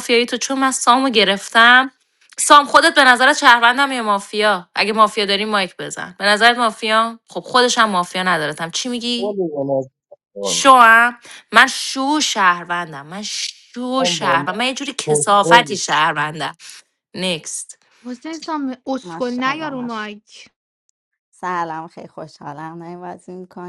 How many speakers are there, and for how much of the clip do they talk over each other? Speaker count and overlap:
4, about 10%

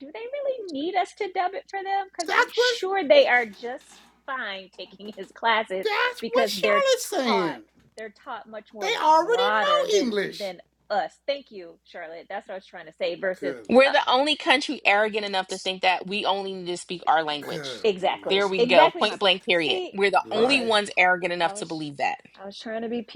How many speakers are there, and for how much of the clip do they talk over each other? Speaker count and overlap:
3, about 25%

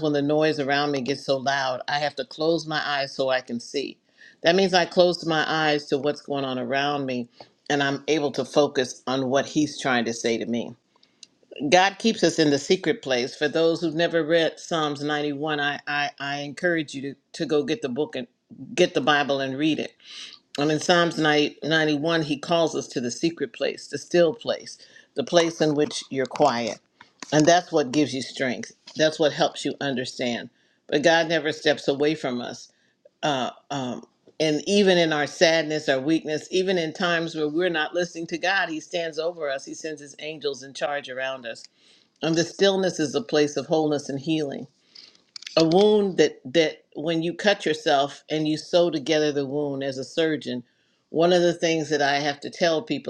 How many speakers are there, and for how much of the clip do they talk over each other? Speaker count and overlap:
1, no overlap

